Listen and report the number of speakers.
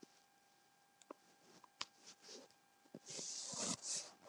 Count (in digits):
0